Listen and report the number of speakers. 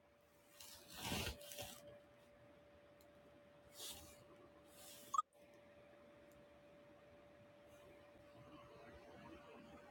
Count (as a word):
zero